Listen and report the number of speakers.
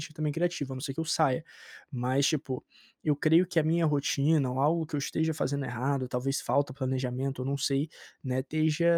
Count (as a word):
one